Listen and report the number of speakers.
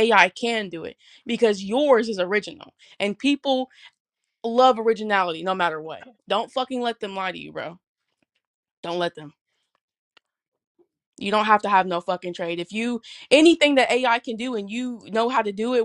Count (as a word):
one